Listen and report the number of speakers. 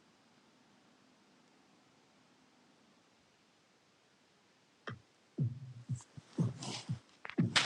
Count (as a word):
zero